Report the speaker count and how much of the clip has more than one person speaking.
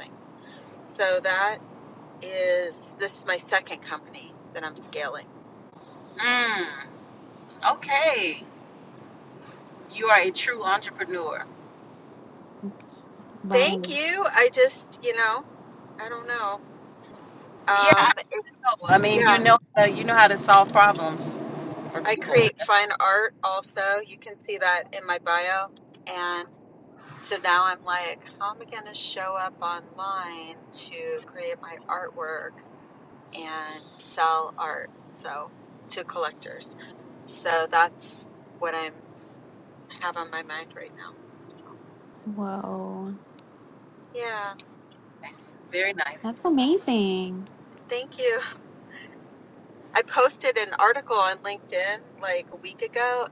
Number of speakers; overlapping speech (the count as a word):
three, about 3%